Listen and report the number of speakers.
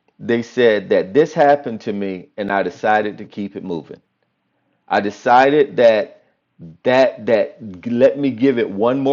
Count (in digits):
1